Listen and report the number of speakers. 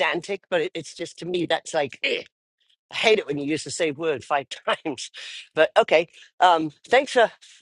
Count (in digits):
1